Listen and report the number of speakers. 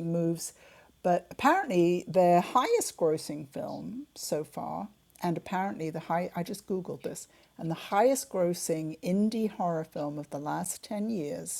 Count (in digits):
1